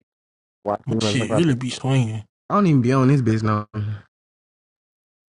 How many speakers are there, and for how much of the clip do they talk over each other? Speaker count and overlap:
2, about 13%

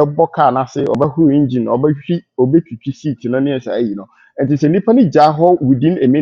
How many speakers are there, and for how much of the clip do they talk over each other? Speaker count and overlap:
1, no overlap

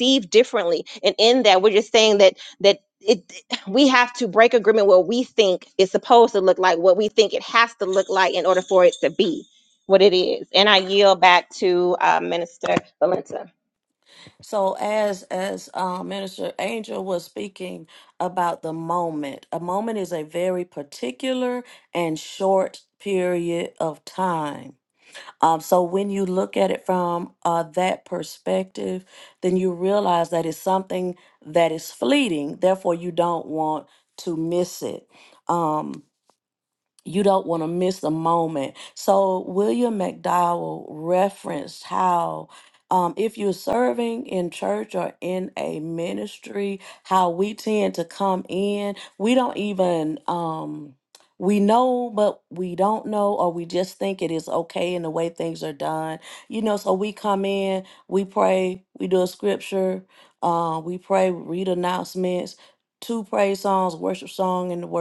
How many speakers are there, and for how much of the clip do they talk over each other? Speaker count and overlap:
2, no overlap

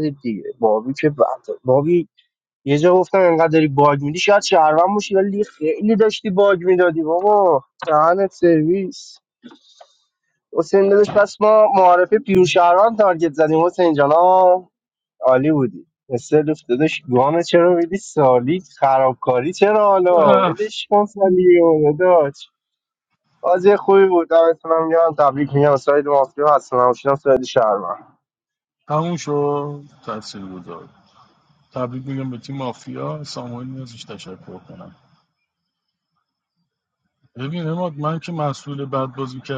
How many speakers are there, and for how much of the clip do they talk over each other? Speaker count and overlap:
2, no overlap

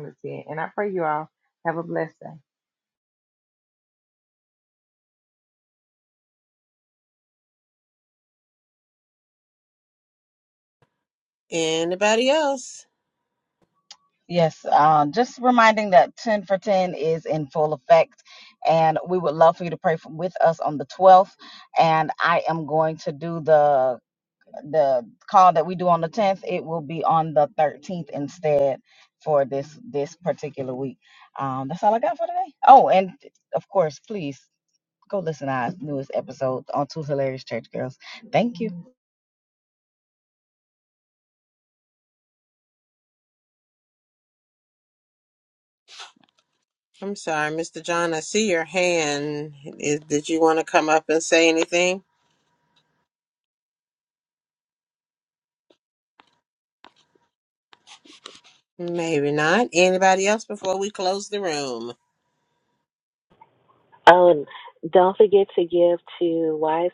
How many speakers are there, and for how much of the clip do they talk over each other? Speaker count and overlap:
4, no overlap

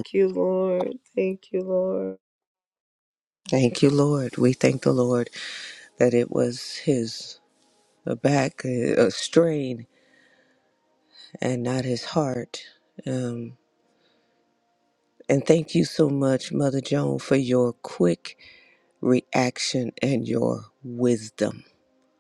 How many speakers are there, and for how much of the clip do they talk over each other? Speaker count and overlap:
2, no overlap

